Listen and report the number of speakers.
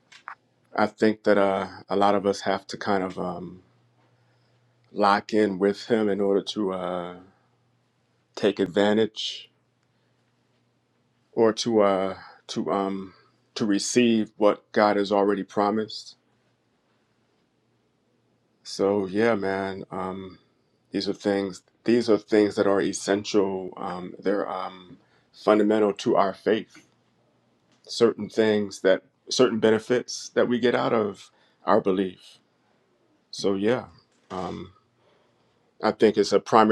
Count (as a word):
one